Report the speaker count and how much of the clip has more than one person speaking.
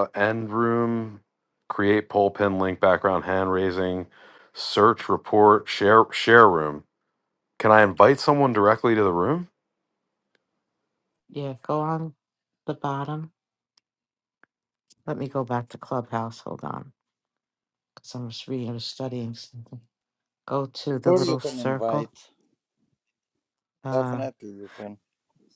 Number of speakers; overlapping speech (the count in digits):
3, about 5%